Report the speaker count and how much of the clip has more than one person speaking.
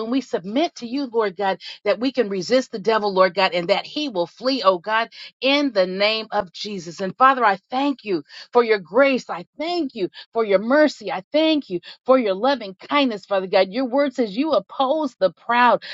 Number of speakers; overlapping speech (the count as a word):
one, no overlap